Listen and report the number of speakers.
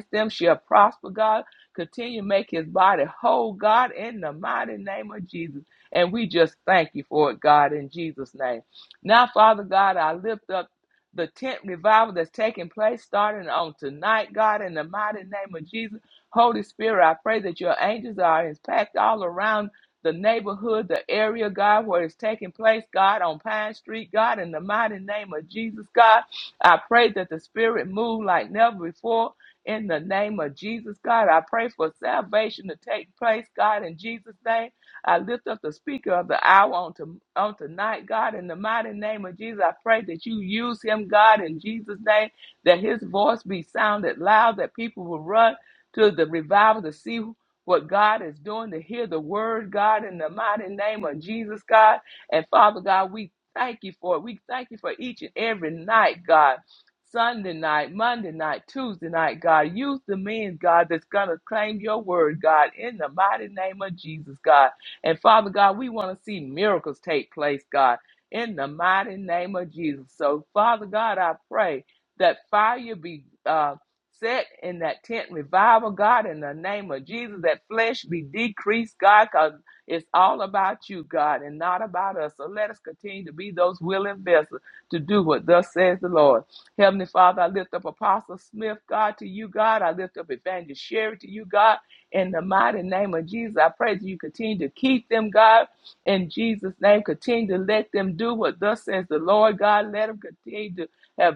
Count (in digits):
1